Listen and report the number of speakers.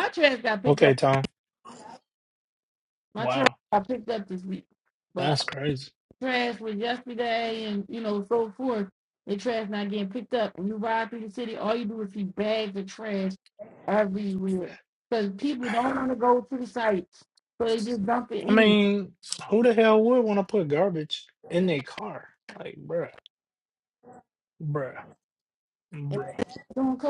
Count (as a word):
two